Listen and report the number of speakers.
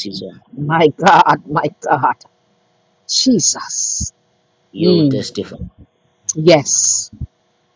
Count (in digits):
2